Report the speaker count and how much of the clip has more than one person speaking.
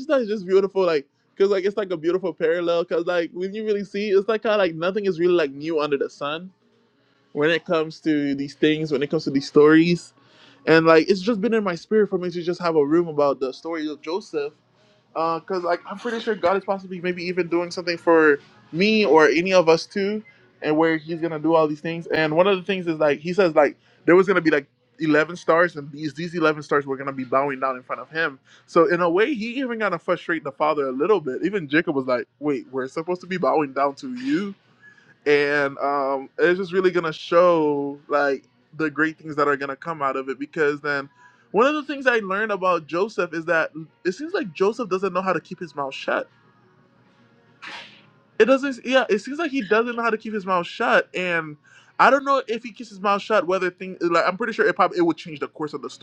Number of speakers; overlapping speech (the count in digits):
1, no overlap